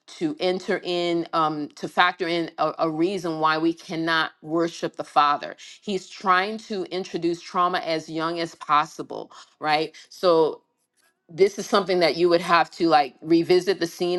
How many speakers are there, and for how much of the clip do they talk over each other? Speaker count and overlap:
one, no overlap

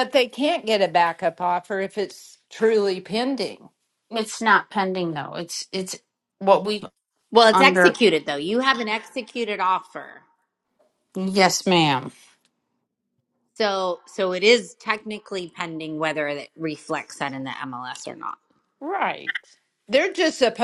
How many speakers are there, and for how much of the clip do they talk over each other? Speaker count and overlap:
three, about 2%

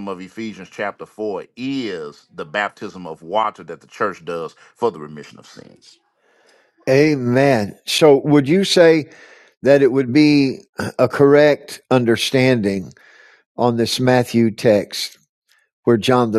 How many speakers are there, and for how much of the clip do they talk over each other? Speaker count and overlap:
two, no overlap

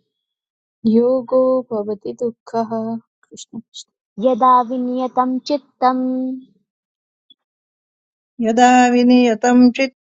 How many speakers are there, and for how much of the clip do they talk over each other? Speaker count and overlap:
three, no overlap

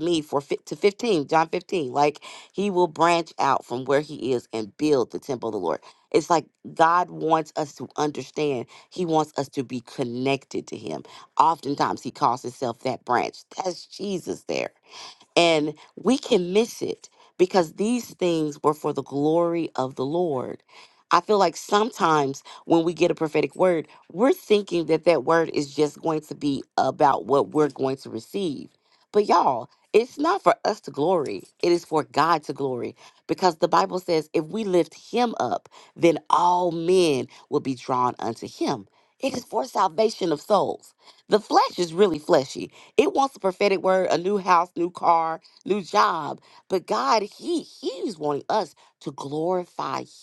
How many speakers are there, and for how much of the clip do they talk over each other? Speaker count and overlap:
one, no overlap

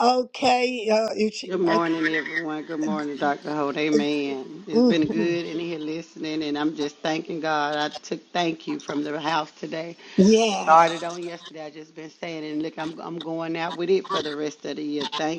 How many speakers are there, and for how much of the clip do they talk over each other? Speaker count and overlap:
two, about 11%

